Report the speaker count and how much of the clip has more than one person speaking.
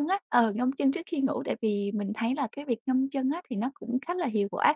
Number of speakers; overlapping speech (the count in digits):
1, no overlap